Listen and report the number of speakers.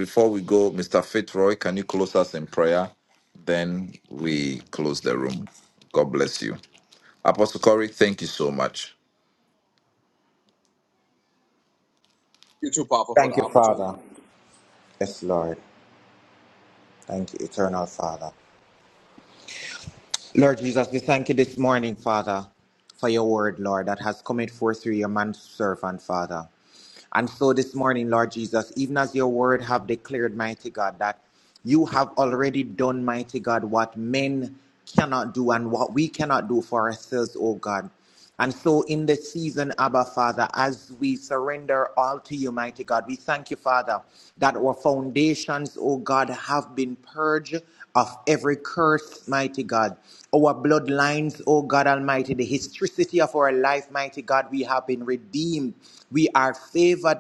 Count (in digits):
3